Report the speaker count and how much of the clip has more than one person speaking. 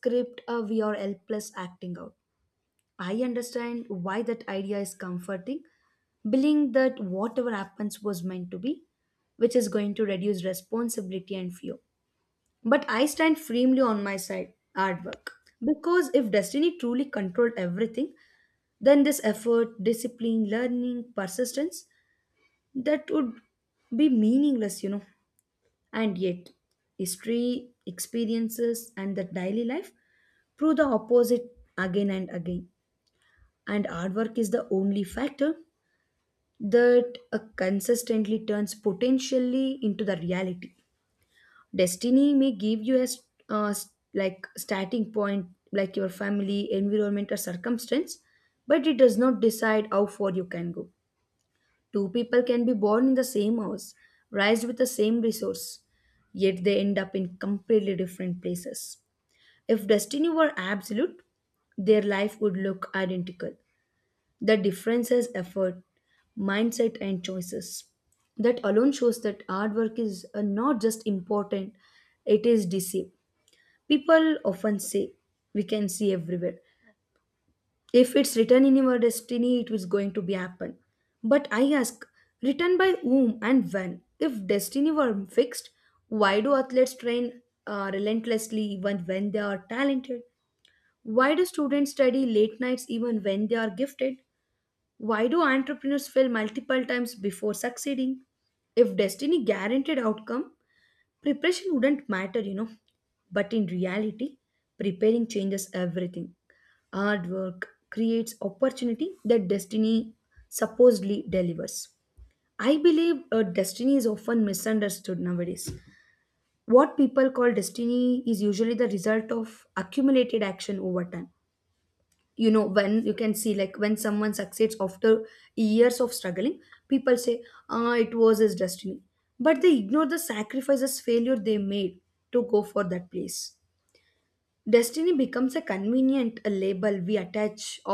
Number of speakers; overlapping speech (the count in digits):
1, no overlap